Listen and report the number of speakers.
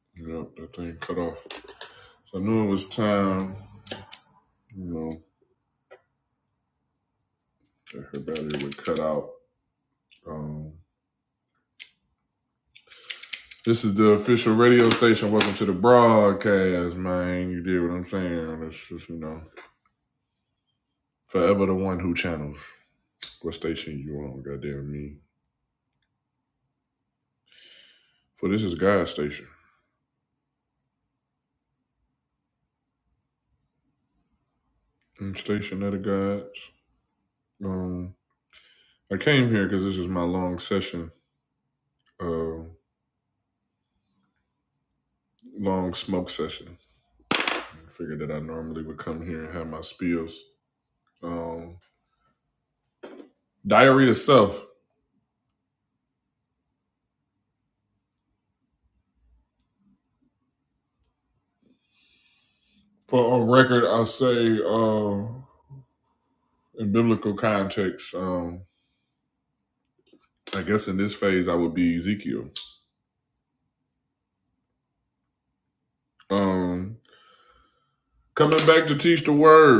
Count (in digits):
1